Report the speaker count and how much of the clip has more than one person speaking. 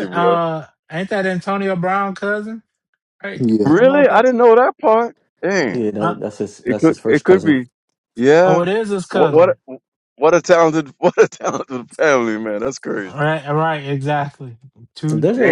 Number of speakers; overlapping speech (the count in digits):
3, about 20%